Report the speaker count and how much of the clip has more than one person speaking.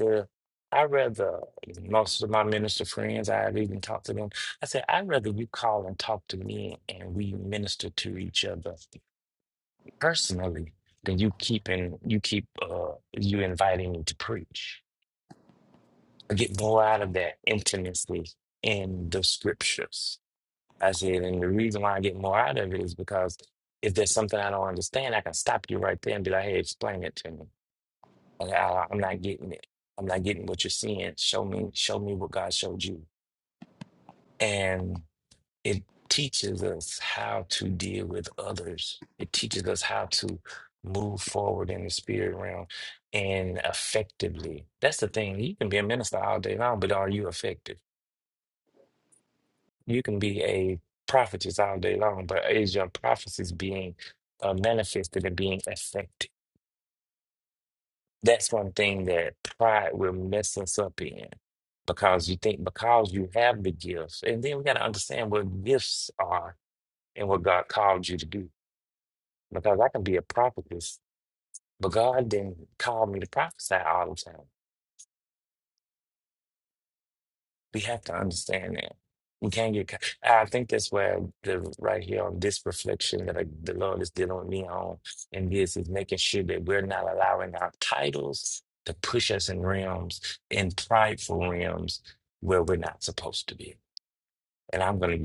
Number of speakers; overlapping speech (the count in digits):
1, no overlap